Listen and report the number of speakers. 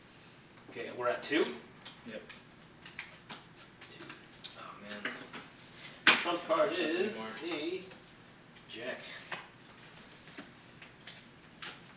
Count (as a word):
two